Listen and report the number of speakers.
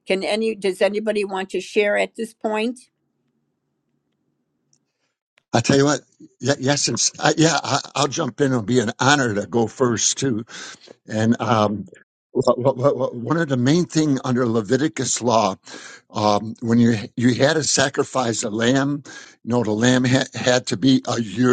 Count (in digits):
2